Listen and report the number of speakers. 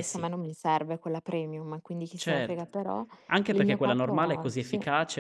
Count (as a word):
two